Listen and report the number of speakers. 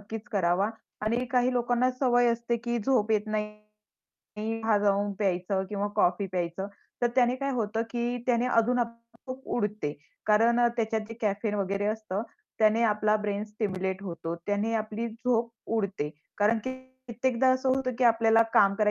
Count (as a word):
one